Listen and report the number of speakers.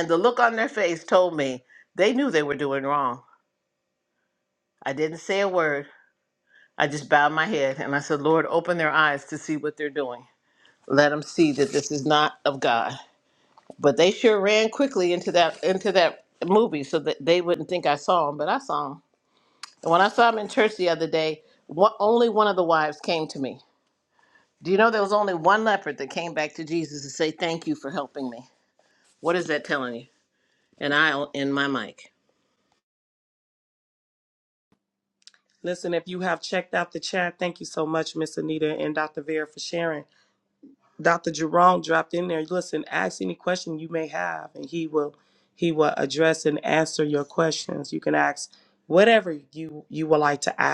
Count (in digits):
2